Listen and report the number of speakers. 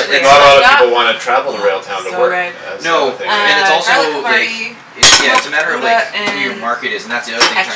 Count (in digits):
3